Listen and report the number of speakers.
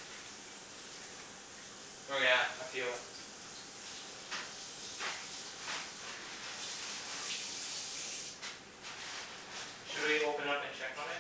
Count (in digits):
1